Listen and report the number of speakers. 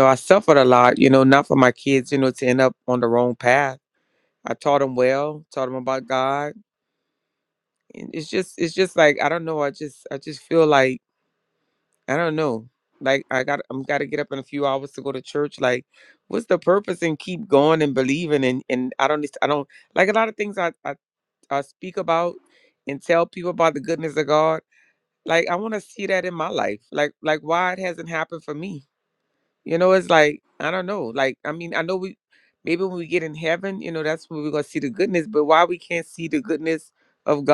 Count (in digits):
1